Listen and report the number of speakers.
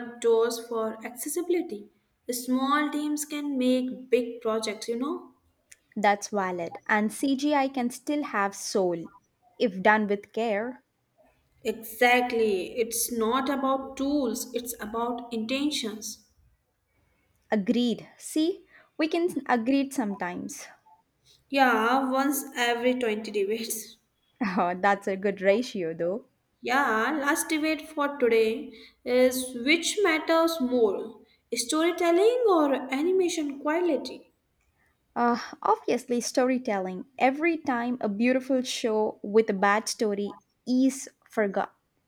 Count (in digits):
2